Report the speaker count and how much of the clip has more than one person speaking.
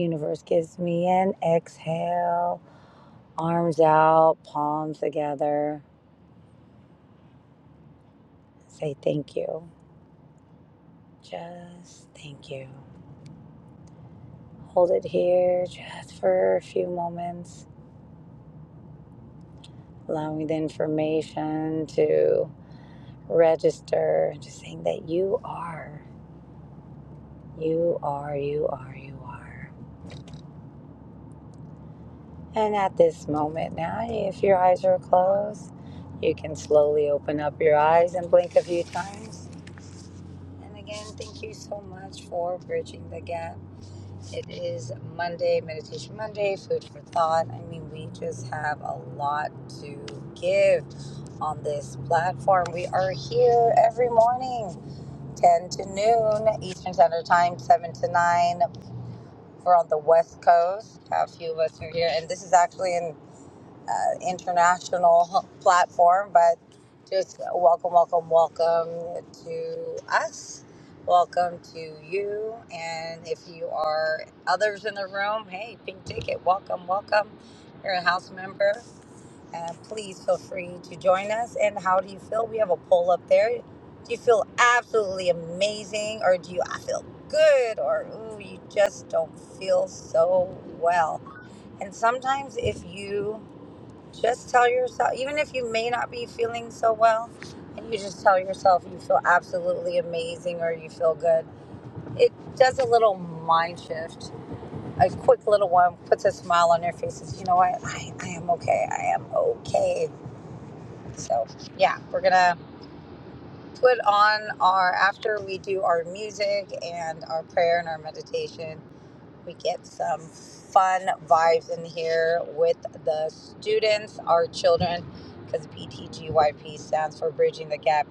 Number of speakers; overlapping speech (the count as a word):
one, no overlap